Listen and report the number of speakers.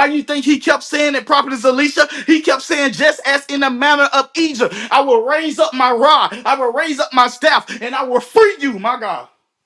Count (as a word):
one